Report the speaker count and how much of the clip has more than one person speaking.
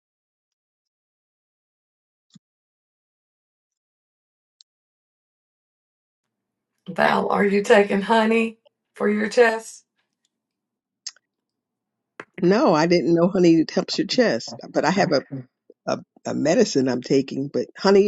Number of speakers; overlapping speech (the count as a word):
two, no overlap